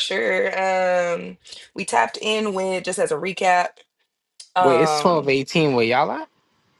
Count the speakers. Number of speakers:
two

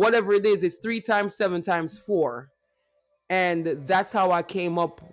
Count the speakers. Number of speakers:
one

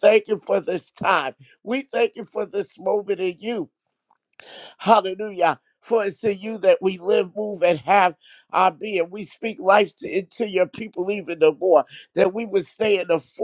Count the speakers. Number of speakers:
one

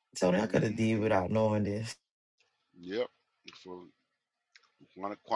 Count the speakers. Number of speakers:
two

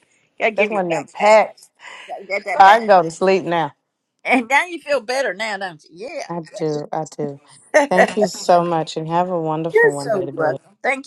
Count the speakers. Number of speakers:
two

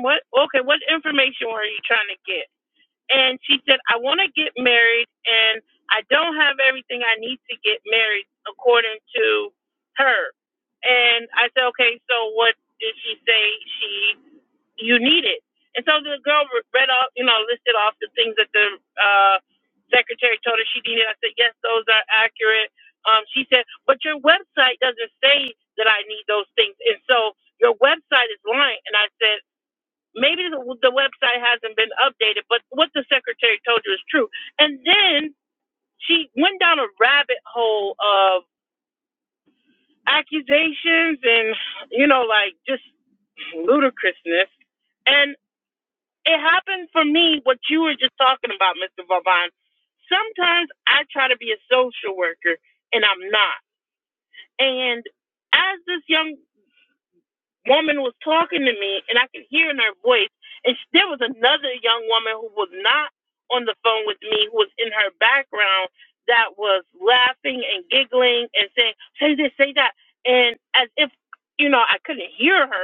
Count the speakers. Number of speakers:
one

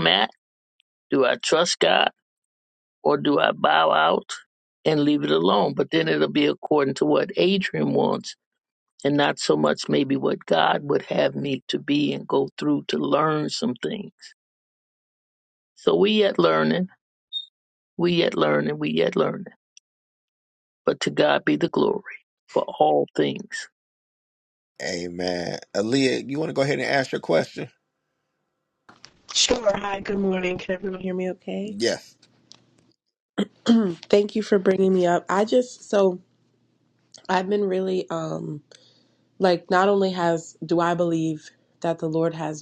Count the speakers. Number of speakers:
three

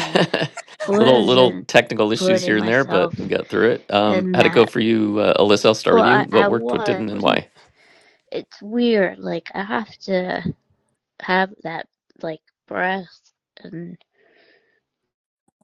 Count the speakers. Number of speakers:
two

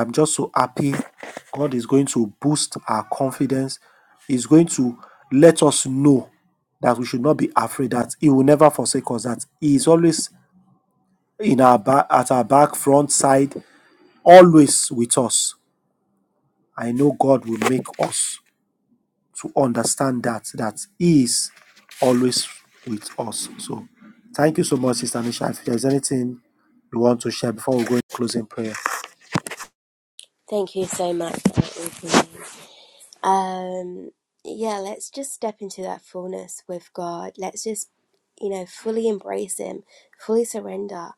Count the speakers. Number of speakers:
two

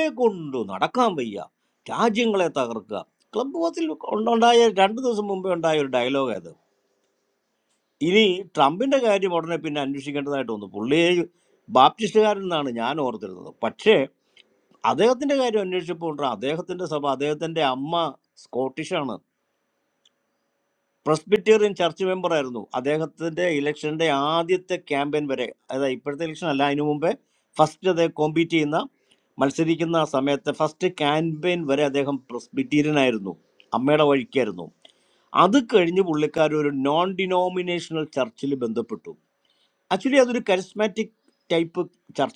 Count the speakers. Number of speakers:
one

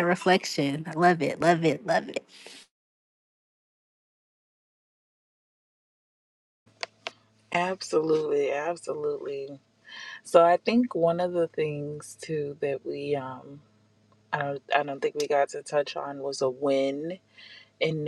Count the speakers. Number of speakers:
two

